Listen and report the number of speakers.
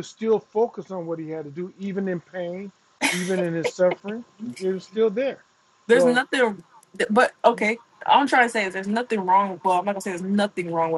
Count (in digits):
2